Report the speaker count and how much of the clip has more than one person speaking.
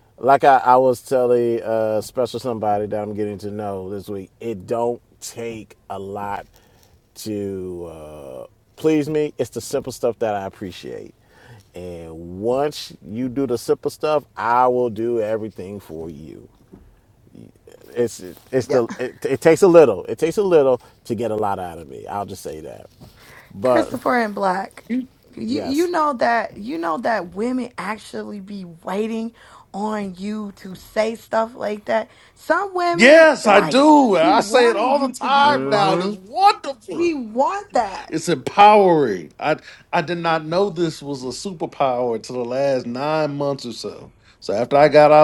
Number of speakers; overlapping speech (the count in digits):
3, about 8%